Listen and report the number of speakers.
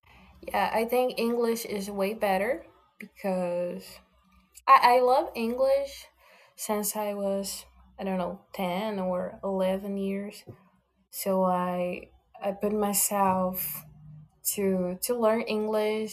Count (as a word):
one